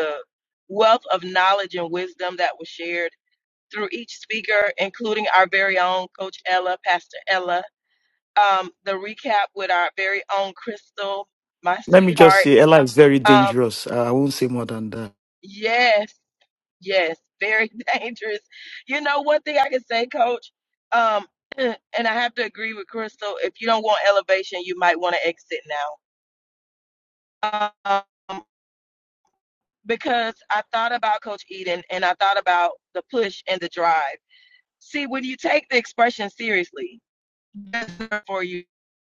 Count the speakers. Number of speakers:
2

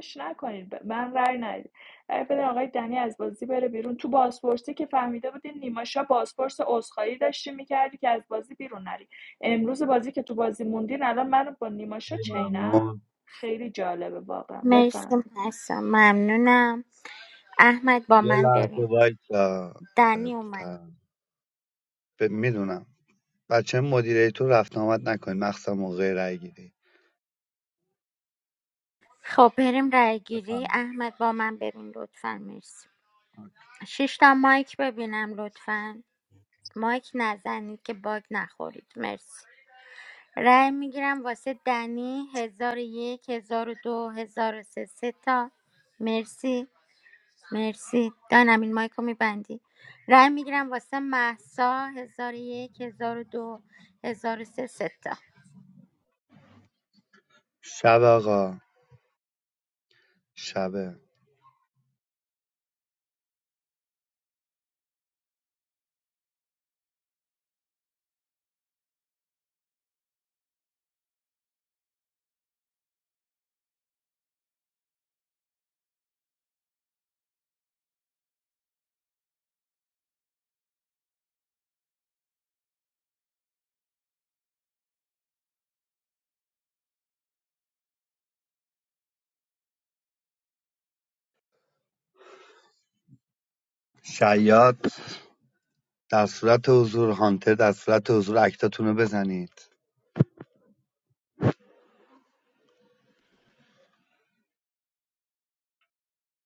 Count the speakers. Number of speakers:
3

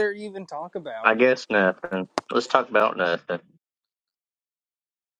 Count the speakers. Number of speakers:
2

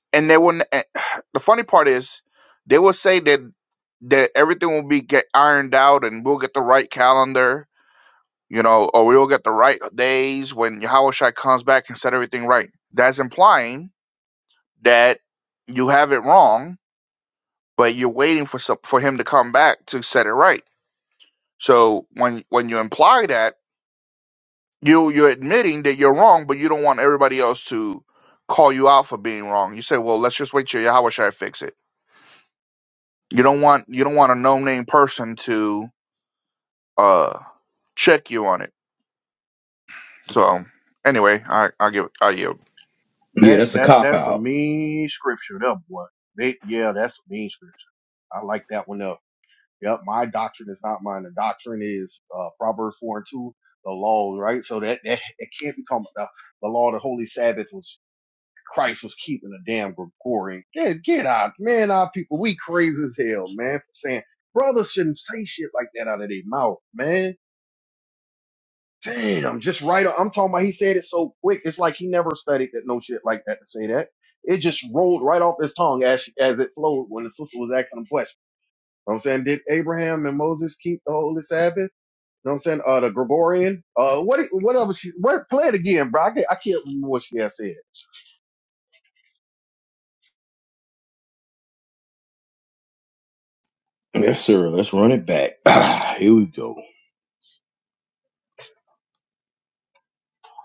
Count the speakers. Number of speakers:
3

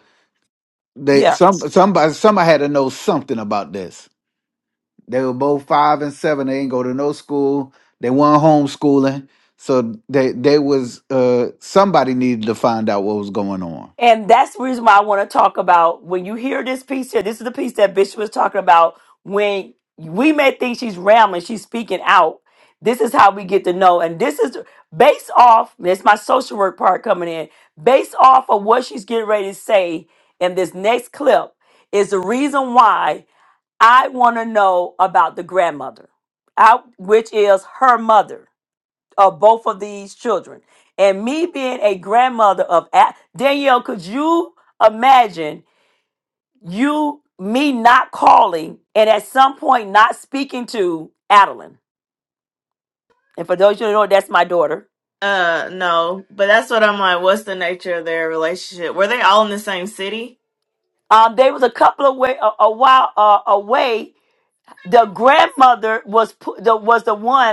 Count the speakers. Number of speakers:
3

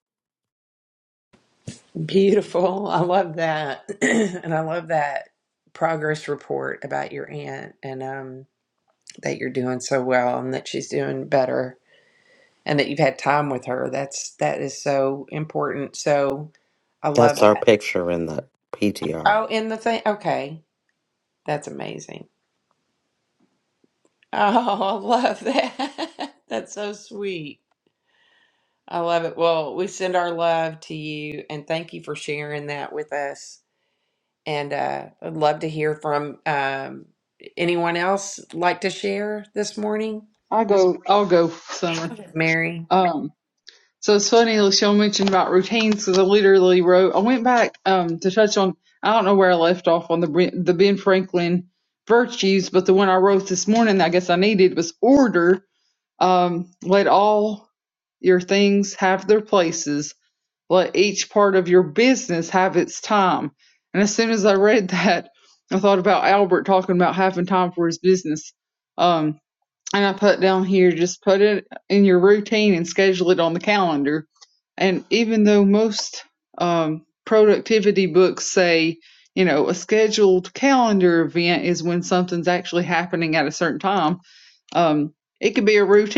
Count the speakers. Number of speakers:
3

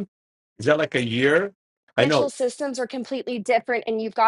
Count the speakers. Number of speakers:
2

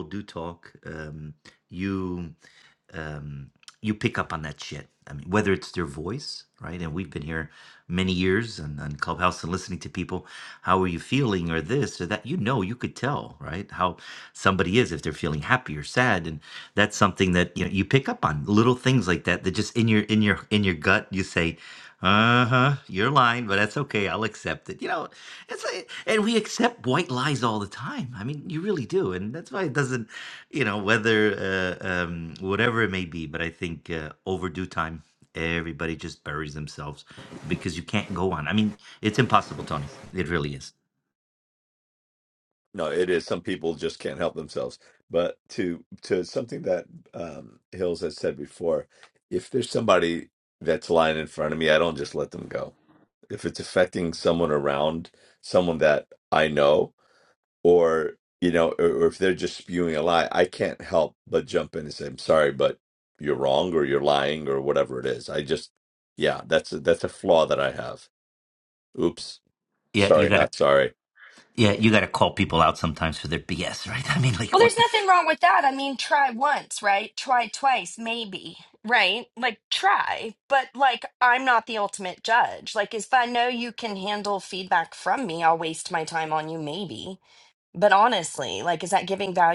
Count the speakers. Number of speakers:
3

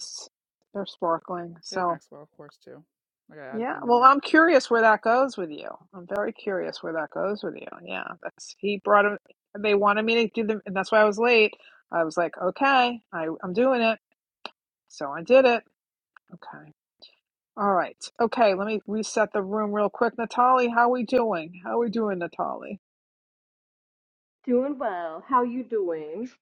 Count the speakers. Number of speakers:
3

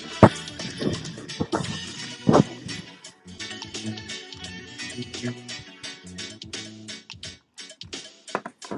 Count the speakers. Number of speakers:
0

